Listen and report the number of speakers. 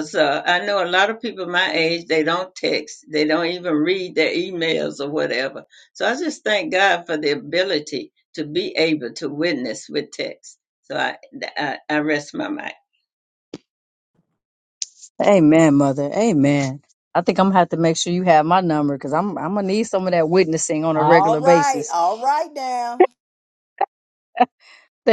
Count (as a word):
three